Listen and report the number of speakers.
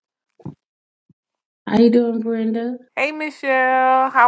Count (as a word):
two